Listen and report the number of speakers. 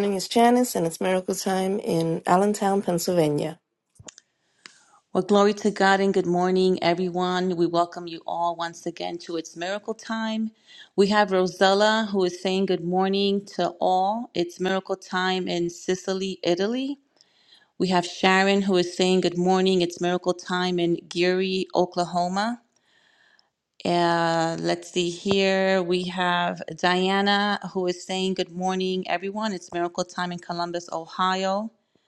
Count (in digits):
2